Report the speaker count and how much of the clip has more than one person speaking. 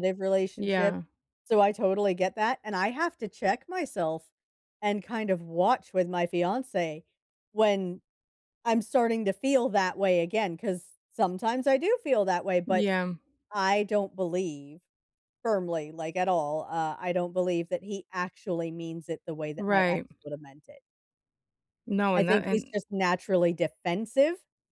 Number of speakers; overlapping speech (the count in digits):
2, about 6%